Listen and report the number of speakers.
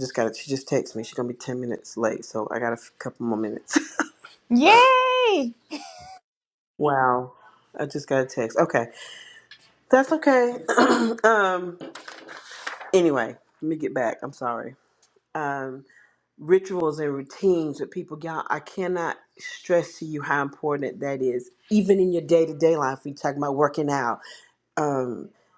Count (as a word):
two